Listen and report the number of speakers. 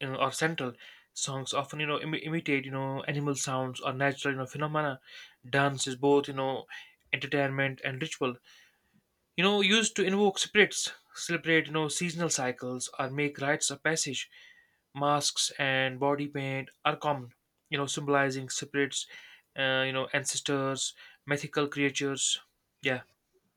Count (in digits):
1